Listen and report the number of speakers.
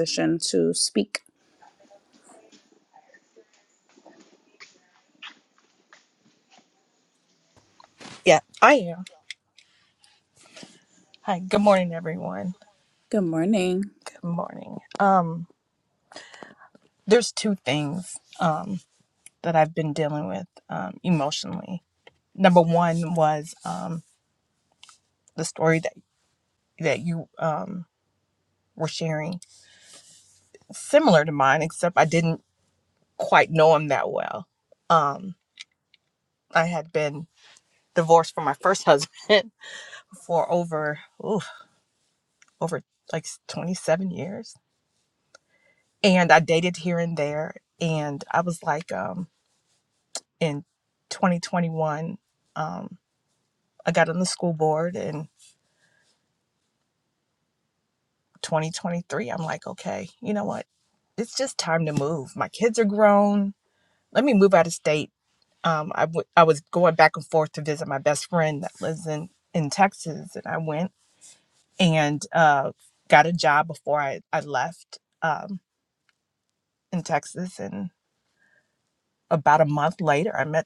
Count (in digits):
2